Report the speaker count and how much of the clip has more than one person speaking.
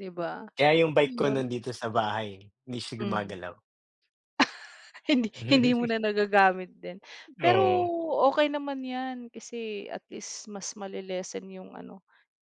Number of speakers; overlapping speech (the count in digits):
2, about 8%